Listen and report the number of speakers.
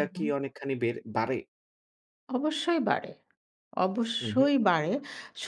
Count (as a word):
two